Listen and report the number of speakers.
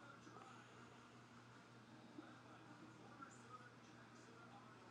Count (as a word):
zero